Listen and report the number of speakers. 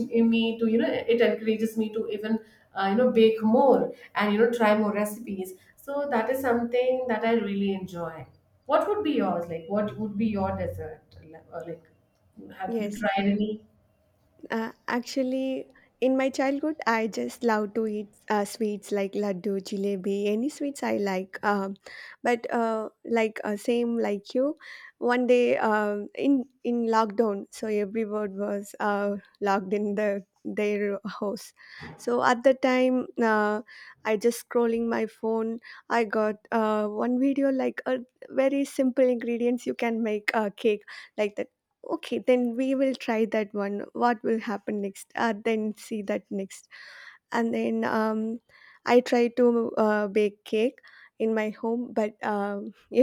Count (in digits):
2